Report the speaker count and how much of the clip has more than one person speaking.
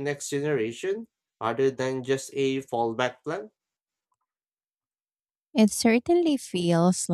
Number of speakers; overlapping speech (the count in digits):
2, no overlap